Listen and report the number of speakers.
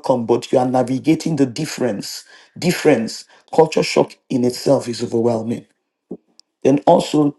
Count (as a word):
one